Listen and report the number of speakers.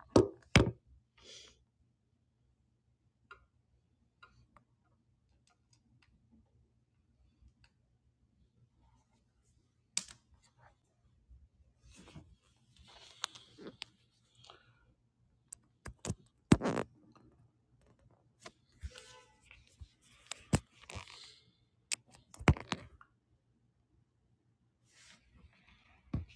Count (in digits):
0